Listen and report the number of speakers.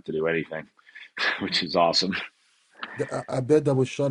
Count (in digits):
2